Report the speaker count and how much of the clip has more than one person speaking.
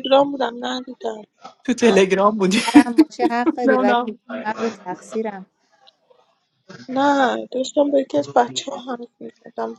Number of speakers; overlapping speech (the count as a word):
three, about 3%